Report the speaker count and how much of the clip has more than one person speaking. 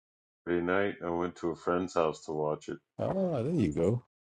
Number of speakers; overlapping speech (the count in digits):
2, no overlap